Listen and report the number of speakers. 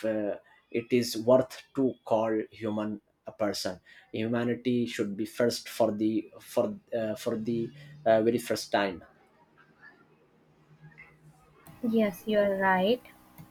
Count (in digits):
2